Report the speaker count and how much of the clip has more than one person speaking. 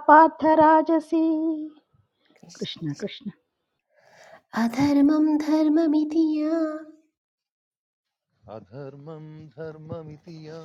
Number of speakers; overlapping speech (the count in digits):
3, no overlap